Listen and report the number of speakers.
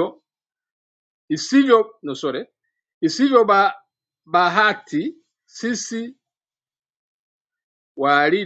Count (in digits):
1